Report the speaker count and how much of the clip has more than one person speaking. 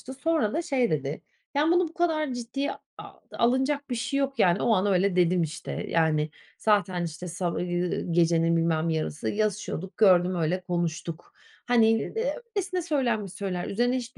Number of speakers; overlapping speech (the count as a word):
one, no overlap